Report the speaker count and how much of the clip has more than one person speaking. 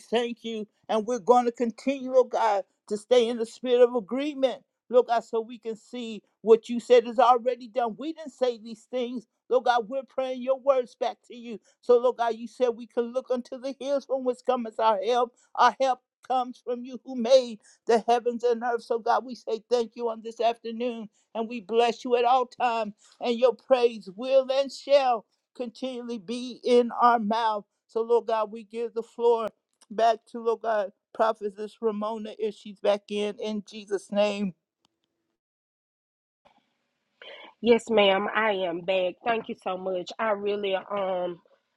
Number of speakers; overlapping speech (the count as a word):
two, no overlap